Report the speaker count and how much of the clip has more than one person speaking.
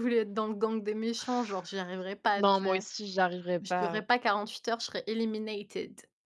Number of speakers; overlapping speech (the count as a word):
two, about 14%